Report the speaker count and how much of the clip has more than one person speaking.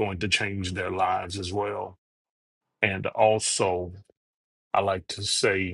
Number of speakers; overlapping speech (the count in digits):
1, no overlap